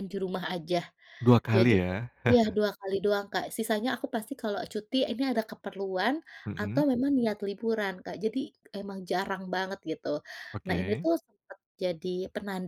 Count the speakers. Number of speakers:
two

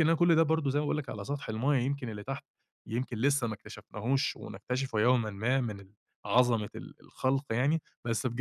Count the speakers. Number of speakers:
one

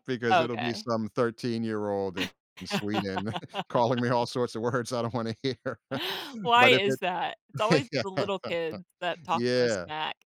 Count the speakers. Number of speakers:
two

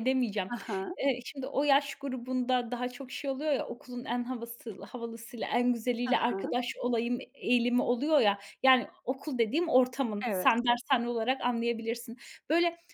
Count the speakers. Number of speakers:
two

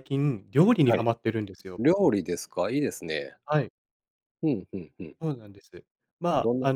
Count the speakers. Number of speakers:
two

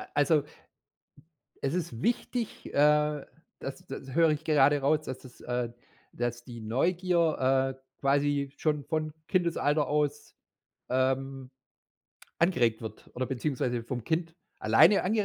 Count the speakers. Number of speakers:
one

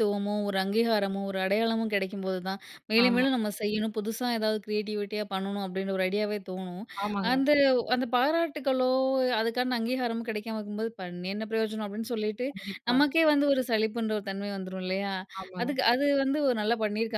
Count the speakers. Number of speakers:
two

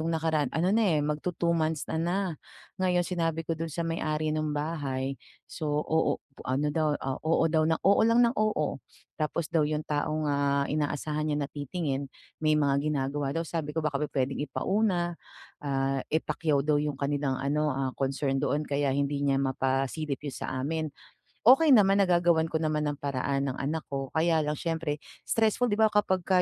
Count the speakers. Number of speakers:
one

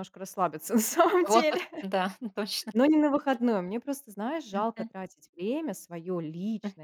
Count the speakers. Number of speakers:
two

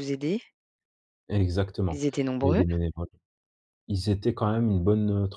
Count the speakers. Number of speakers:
two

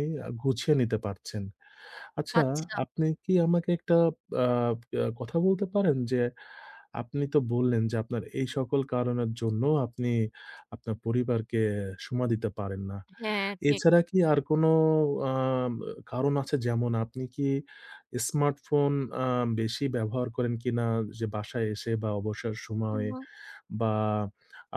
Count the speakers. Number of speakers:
two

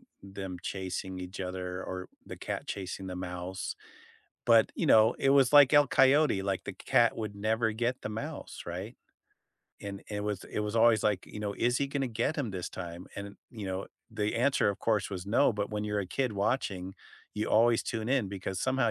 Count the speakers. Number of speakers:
one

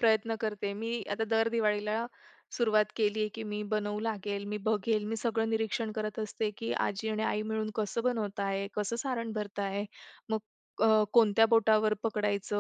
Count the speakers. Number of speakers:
one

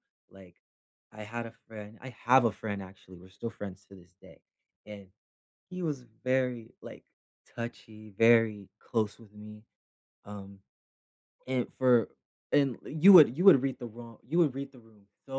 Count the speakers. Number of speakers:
one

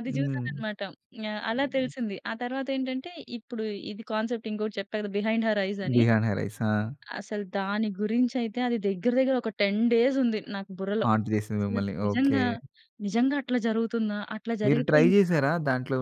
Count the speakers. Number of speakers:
two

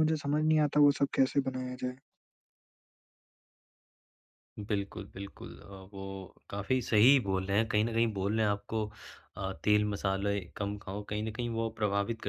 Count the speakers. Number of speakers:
two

